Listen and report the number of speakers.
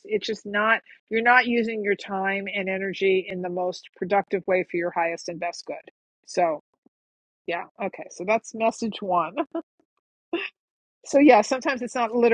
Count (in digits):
1